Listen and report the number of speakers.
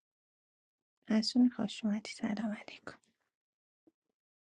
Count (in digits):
1